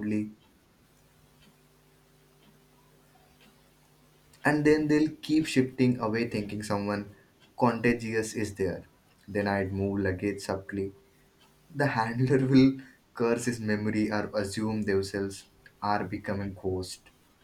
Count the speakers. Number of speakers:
one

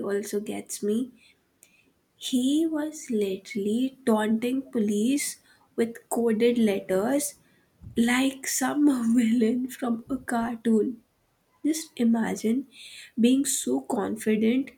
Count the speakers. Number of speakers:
one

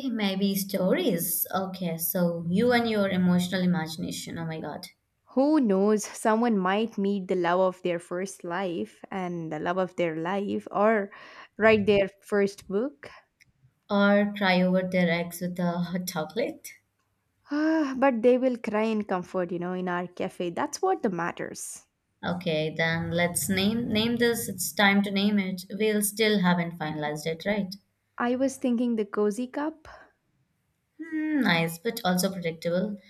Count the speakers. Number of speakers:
two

